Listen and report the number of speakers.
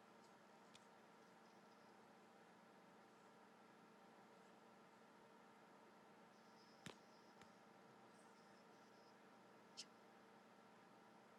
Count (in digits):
0